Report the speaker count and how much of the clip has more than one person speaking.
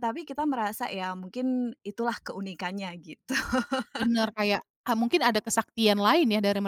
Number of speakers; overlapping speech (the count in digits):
2, no overlap